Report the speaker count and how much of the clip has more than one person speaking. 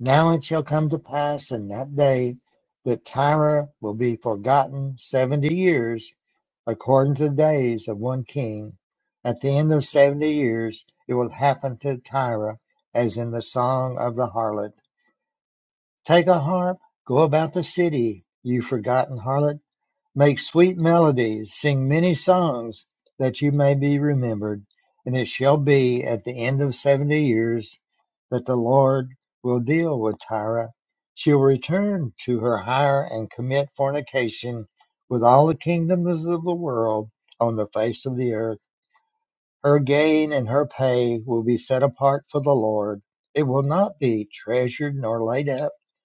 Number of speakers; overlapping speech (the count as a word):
one, no overlap